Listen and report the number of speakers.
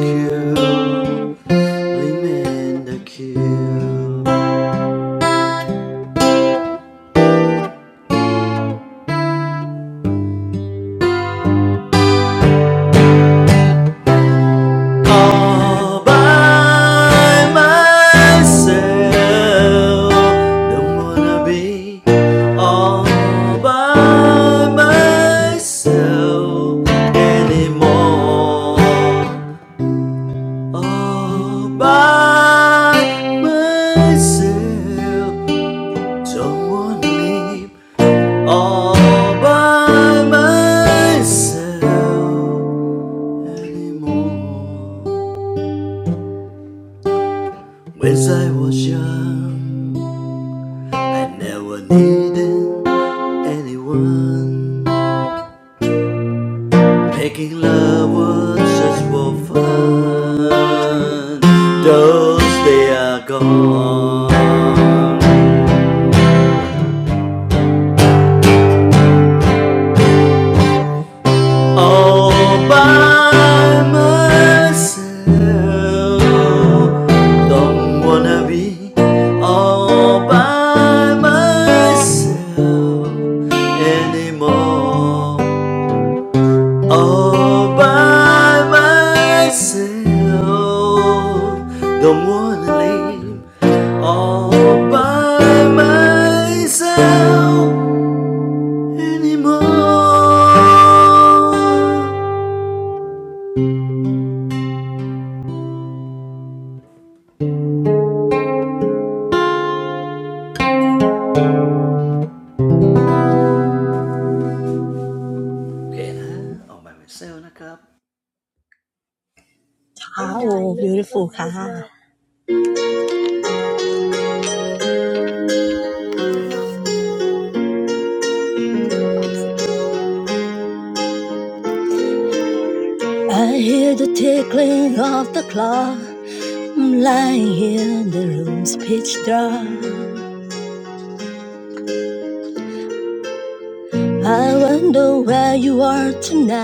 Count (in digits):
2